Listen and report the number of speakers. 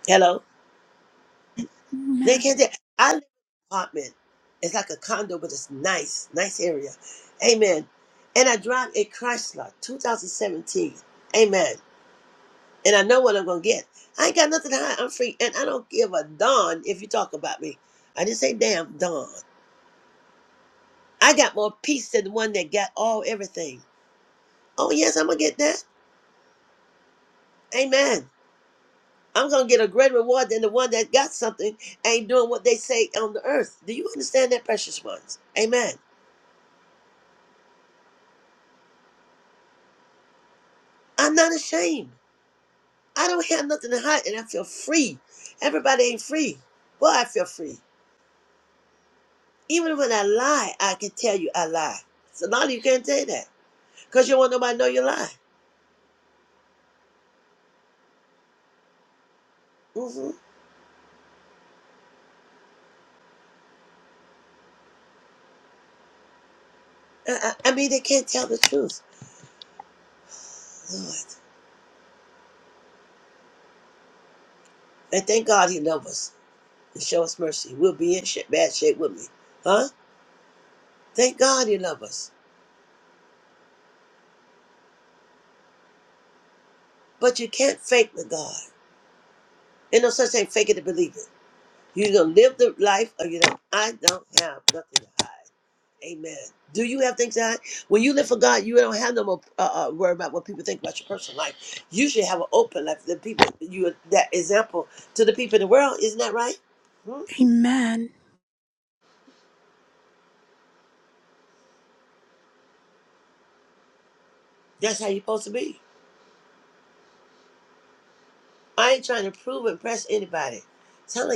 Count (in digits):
2